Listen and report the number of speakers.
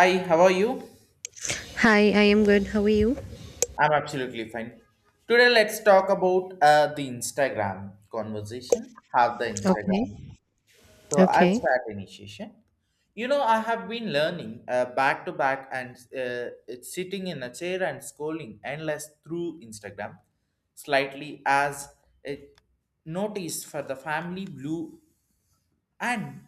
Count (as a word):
two